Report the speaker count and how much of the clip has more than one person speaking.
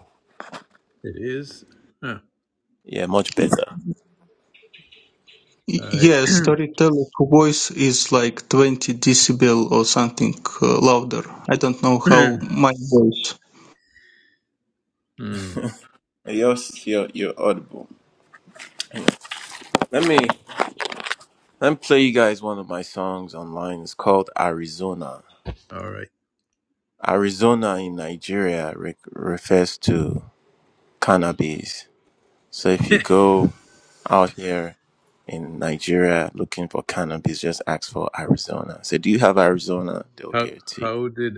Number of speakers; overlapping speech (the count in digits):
3, about 3%